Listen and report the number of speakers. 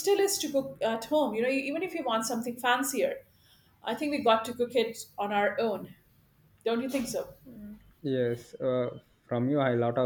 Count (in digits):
2